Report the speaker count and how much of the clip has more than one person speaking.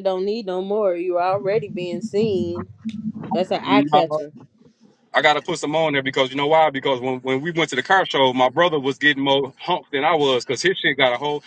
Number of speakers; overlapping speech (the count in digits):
2, about 5%